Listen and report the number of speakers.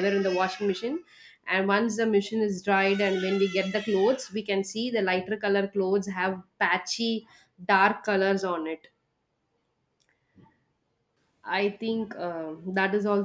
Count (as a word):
one